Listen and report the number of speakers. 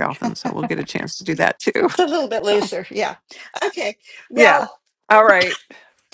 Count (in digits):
2